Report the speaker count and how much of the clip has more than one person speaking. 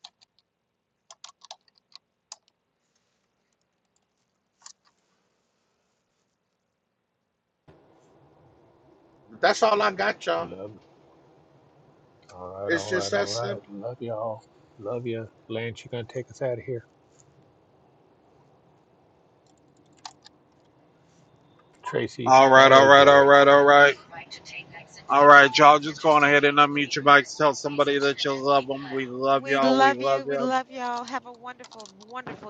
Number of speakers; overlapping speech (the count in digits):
4, about 10%